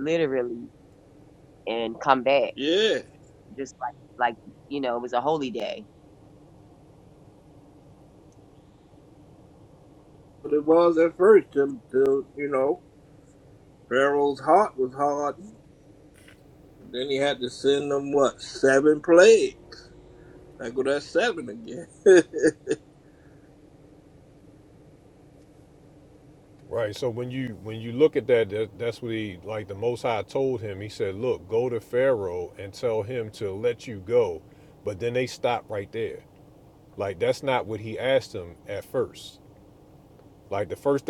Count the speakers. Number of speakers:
3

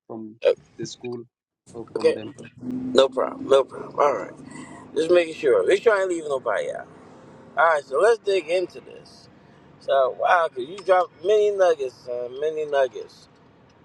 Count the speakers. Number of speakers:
2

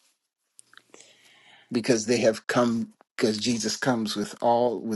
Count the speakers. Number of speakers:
1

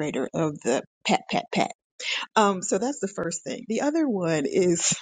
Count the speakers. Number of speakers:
1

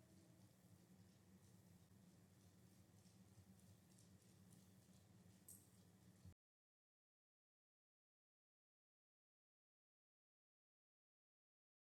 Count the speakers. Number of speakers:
0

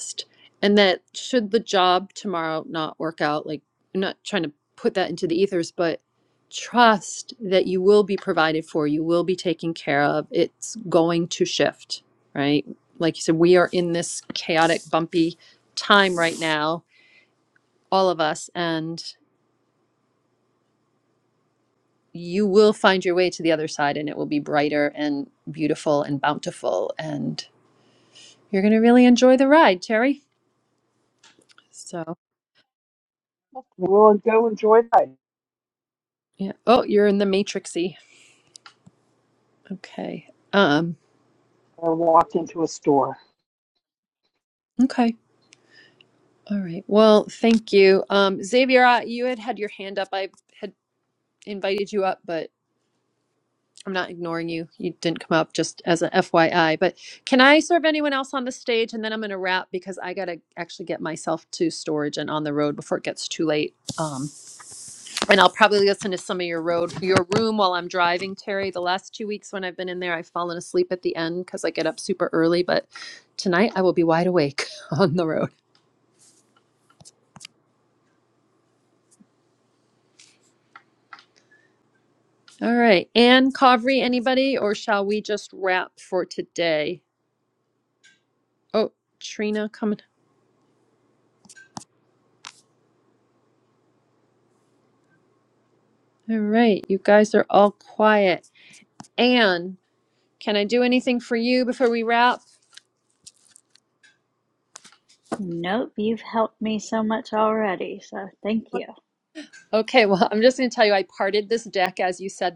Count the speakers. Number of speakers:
3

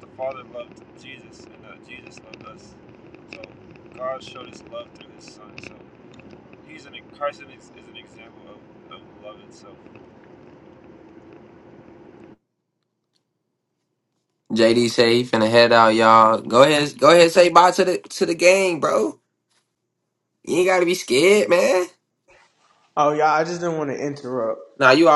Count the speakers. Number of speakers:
3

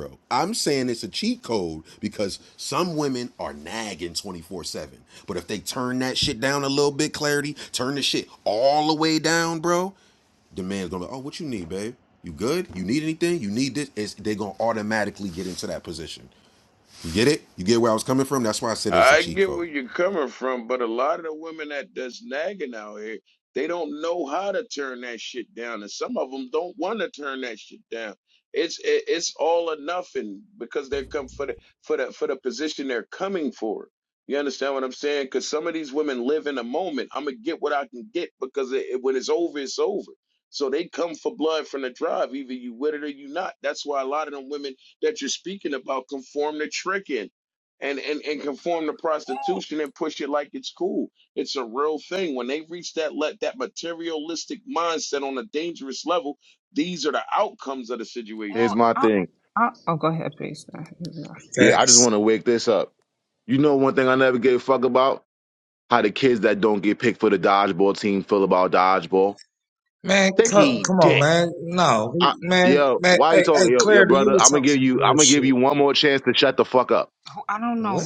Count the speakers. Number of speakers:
5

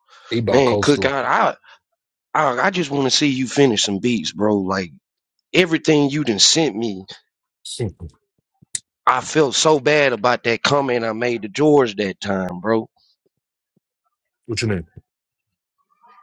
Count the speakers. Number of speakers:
2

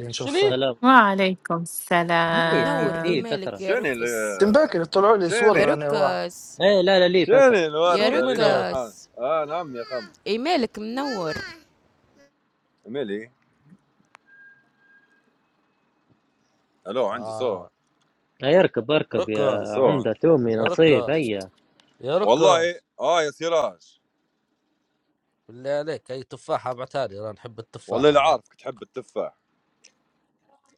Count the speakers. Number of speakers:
6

